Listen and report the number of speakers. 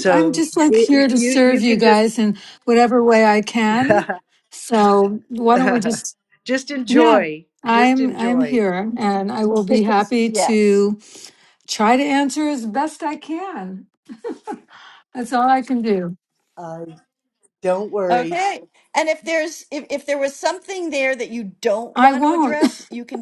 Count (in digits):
3